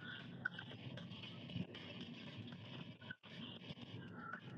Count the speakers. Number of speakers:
zero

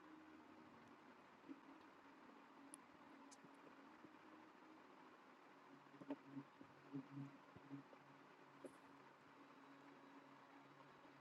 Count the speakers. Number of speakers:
zero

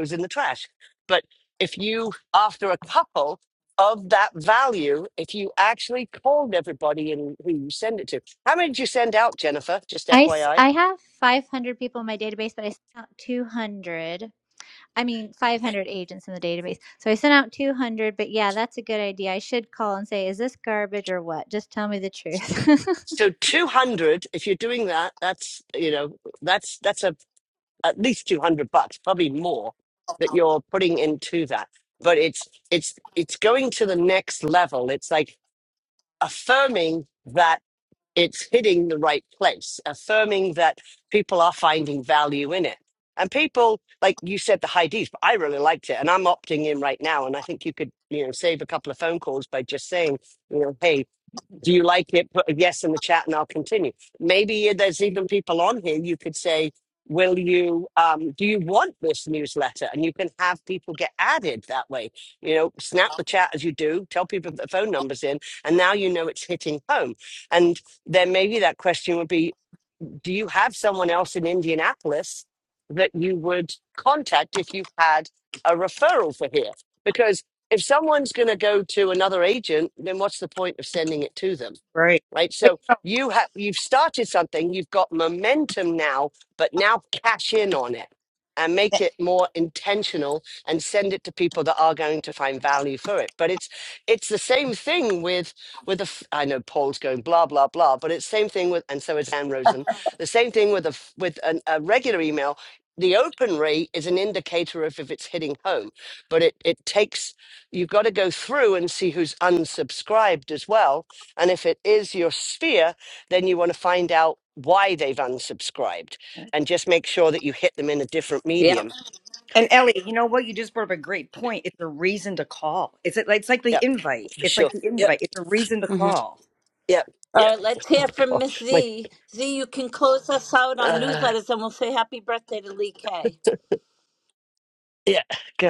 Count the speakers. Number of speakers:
four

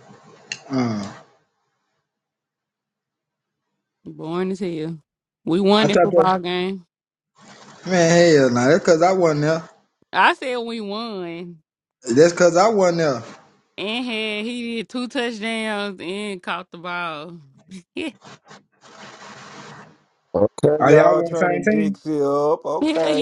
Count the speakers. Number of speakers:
three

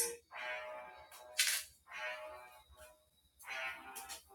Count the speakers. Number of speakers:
zero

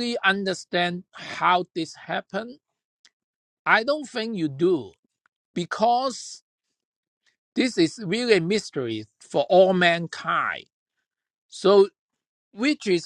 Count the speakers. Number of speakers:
one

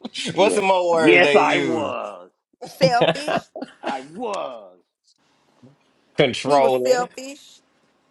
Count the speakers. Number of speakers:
three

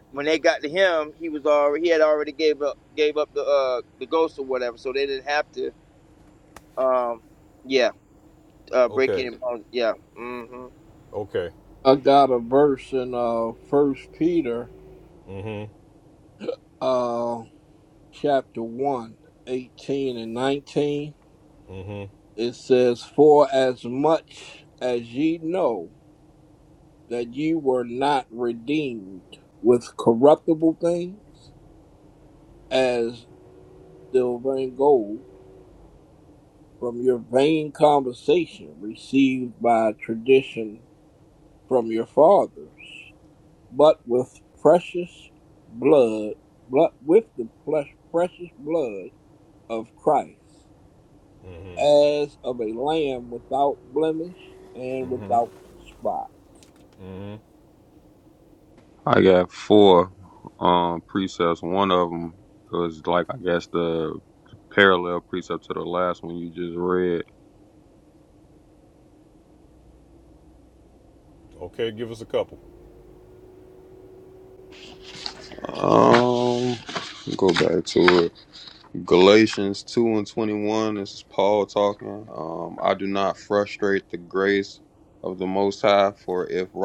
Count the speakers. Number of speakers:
four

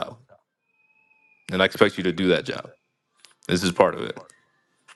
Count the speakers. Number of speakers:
one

